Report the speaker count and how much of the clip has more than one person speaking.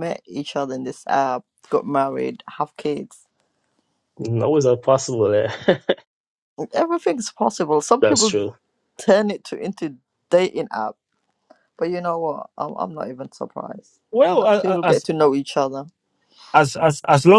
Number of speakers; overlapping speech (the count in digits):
3, about 5%